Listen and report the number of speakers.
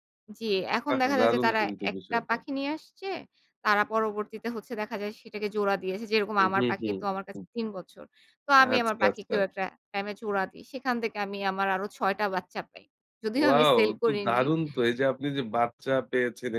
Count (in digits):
2